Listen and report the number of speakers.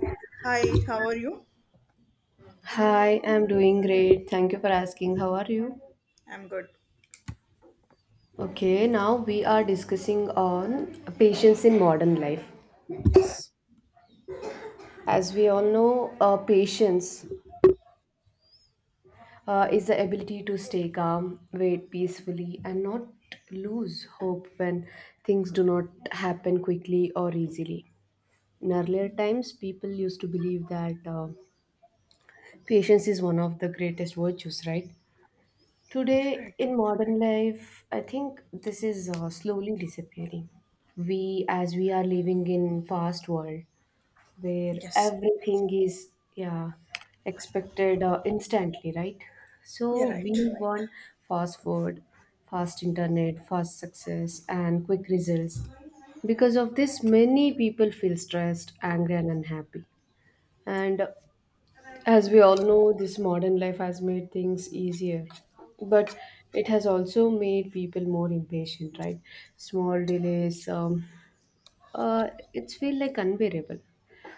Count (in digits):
2